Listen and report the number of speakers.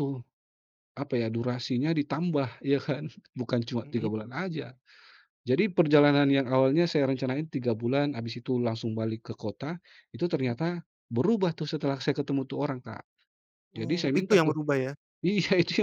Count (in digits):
2